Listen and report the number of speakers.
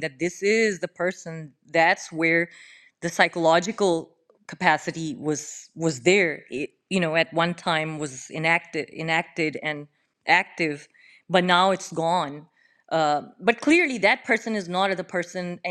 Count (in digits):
1